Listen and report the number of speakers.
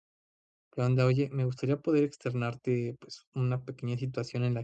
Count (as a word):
one